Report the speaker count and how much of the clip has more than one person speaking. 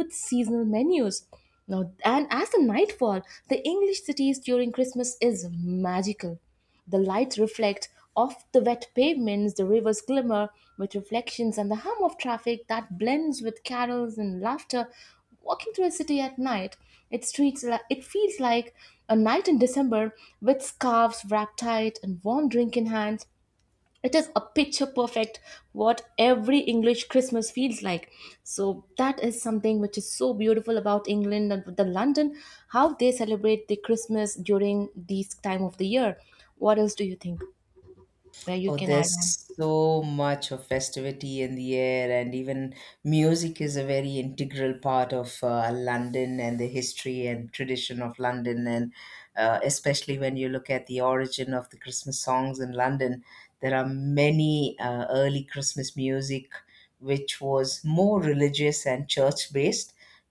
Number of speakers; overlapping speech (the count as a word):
two, about 1%